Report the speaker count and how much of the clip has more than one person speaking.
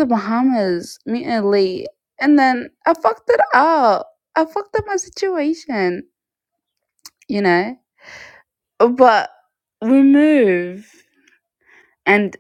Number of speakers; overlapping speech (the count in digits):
1, no overlap